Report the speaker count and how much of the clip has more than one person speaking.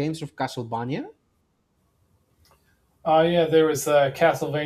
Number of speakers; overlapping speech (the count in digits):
2, no overlap